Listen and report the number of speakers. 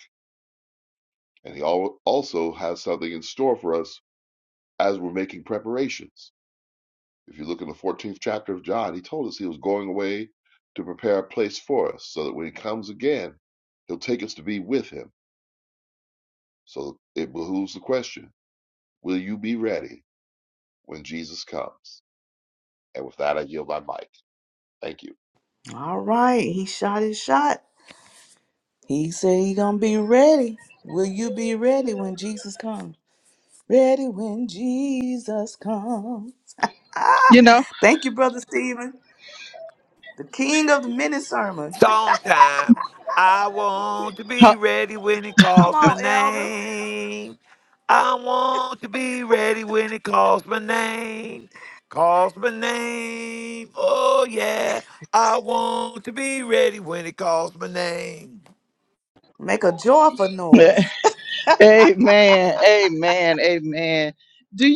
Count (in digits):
4